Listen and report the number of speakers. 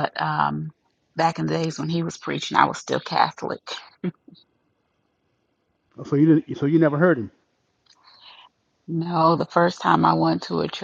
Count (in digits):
2